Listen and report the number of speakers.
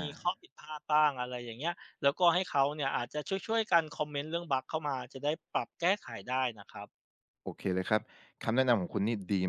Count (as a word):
two